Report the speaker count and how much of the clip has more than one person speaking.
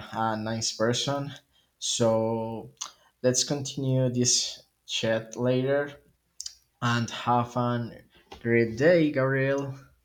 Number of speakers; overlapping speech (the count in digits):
1, no overlap